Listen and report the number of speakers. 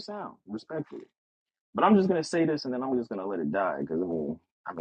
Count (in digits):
1